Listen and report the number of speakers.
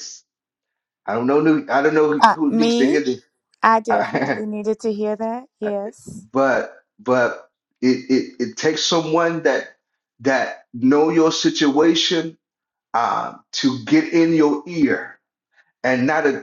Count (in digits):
2